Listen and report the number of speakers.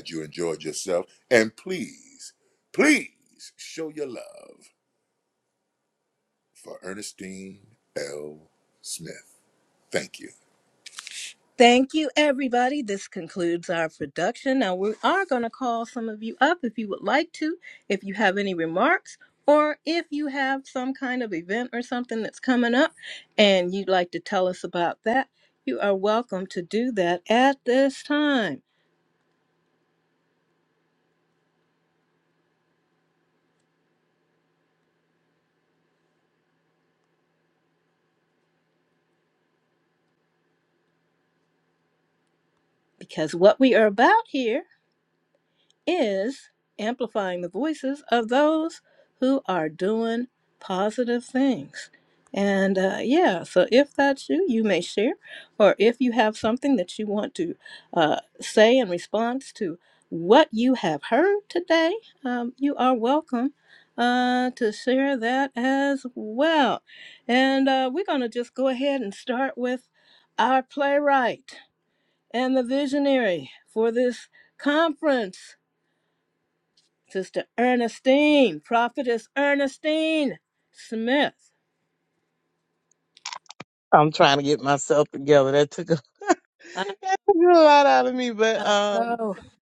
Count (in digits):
3